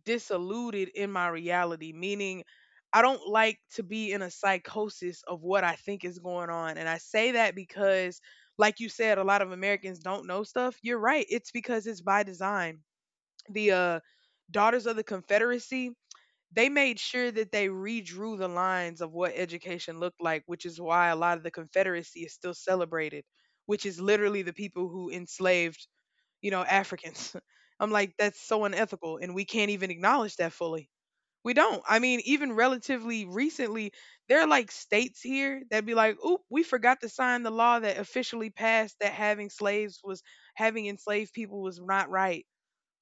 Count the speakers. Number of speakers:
1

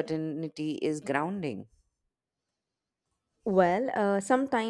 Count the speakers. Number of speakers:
2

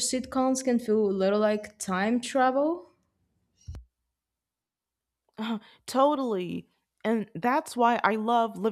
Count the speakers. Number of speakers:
2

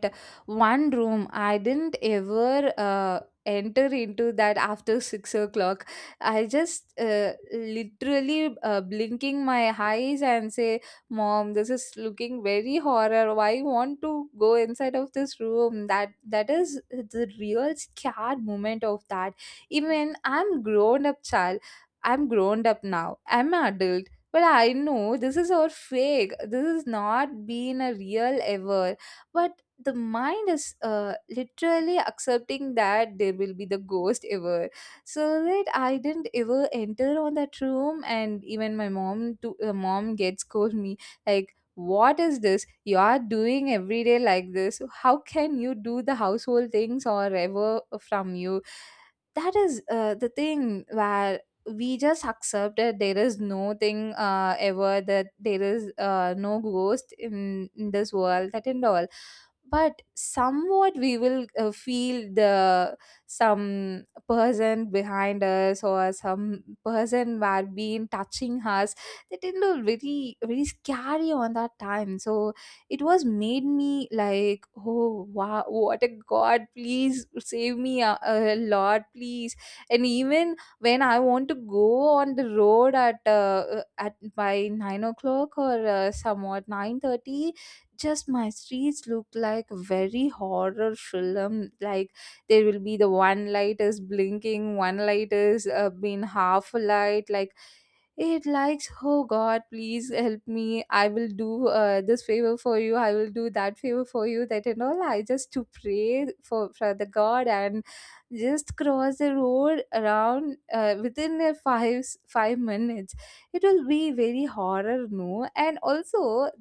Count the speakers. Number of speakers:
1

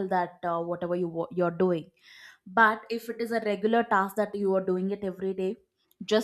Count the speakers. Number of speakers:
1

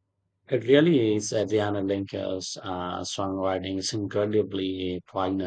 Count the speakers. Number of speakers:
1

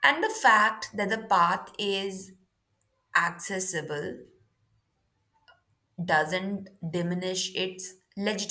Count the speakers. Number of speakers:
1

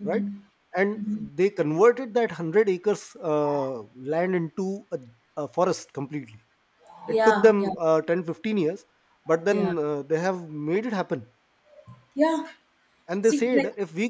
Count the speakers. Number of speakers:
2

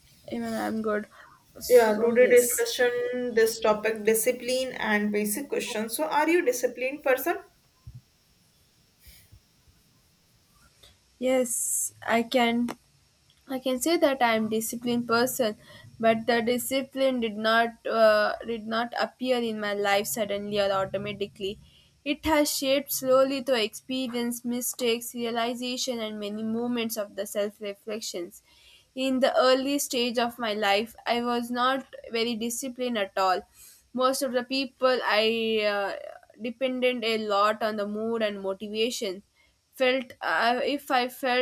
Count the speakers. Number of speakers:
2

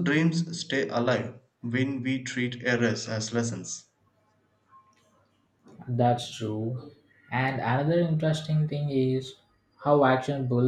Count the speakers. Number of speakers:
2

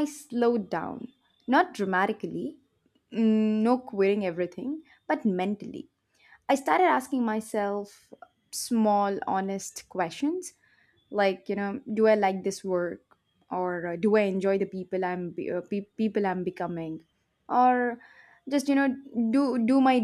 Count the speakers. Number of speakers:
1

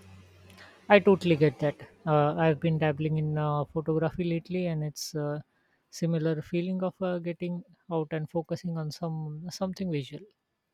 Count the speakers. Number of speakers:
1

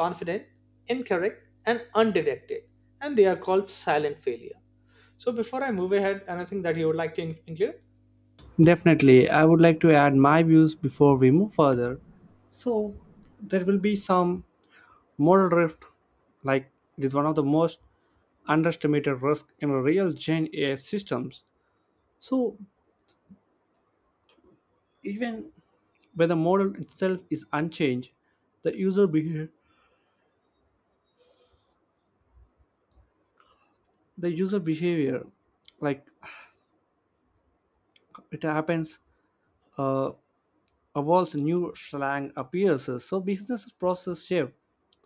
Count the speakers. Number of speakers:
2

